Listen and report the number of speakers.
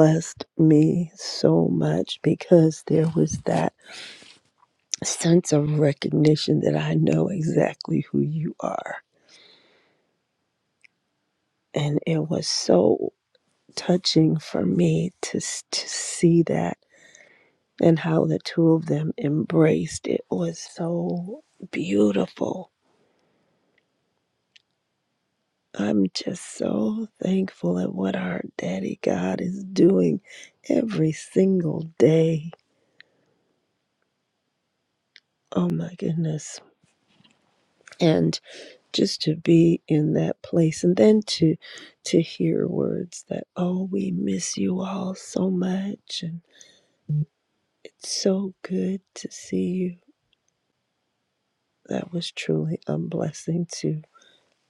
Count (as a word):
one